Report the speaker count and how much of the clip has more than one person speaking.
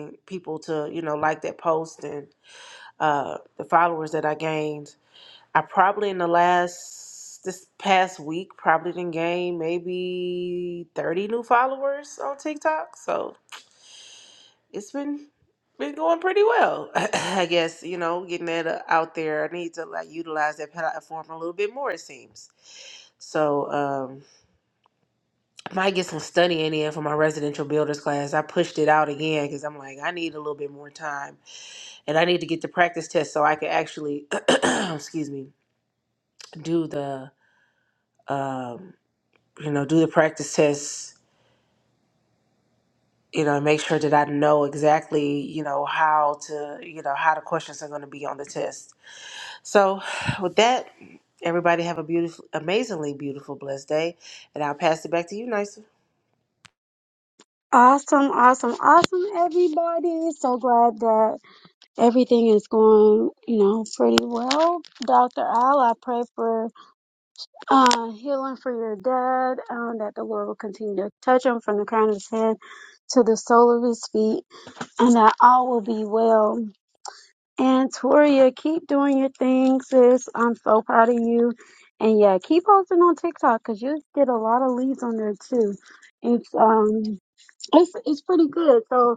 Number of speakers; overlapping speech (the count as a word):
two, no overlap